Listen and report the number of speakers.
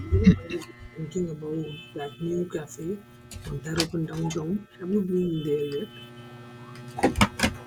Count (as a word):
one